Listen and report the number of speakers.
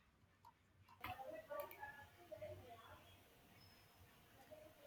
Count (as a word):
zero